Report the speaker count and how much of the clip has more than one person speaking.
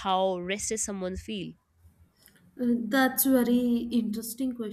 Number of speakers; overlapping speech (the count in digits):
2, no overlap